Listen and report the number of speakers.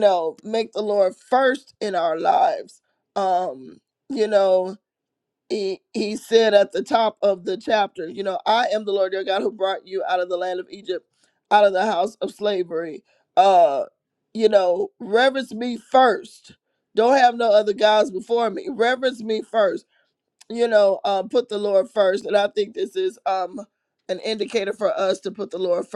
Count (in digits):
1